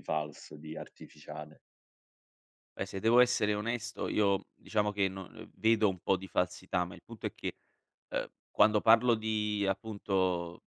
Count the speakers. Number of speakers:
2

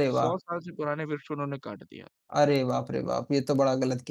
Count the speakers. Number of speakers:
2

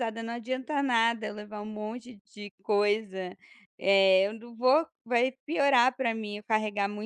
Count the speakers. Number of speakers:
1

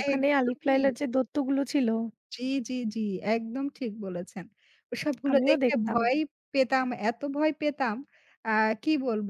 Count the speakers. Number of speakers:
2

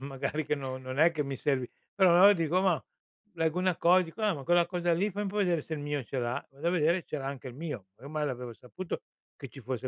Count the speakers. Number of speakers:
1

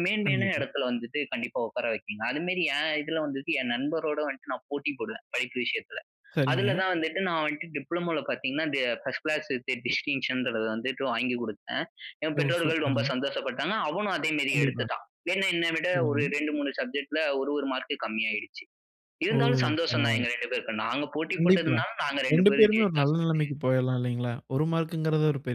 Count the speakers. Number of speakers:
2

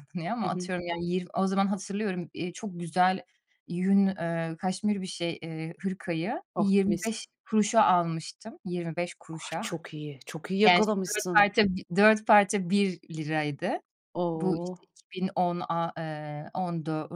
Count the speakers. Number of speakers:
2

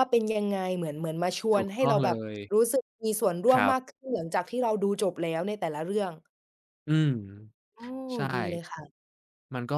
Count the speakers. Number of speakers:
2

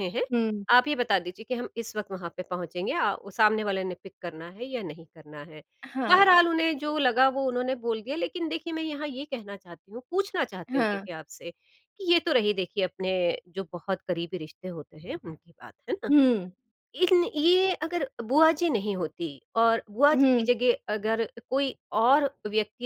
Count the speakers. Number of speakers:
2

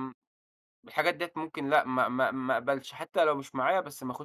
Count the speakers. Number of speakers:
1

